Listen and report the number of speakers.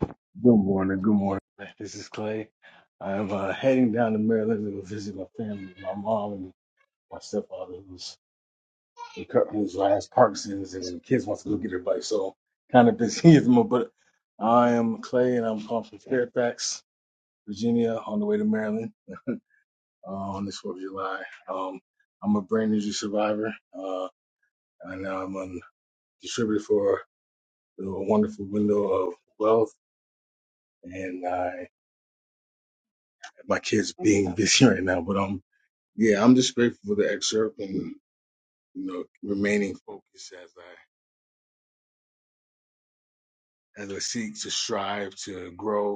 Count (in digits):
1